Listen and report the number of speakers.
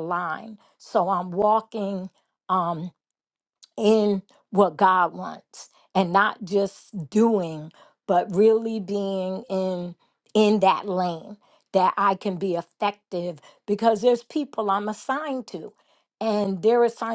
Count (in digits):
1